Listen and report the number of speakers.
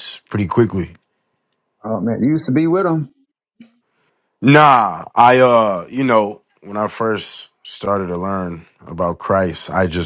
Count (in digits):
2